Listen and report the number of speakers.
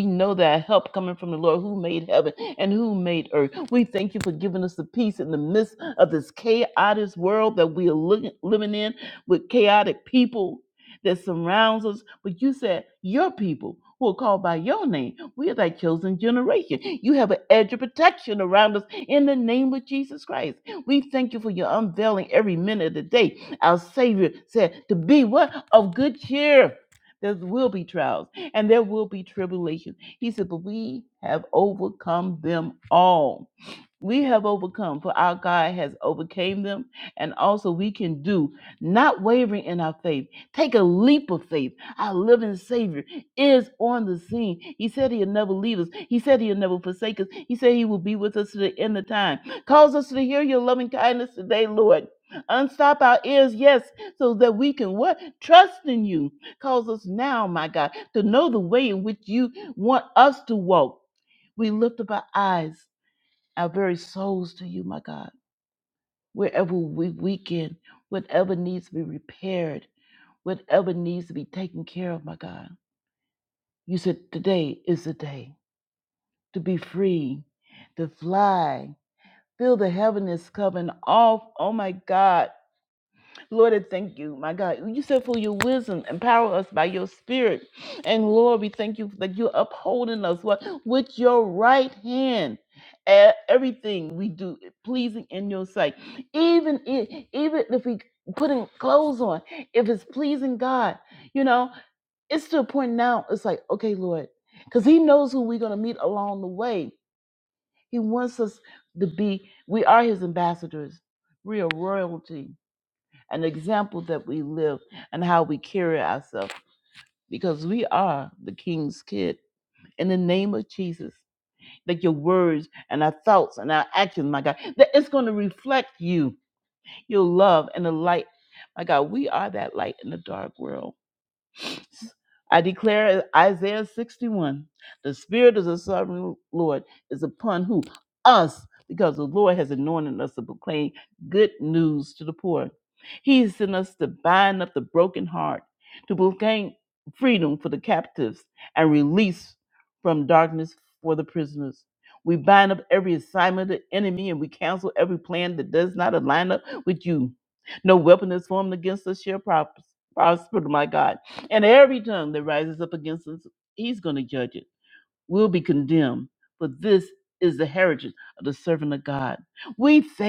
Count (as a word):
one